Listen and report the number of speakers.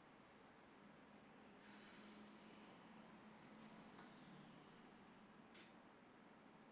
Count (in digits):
0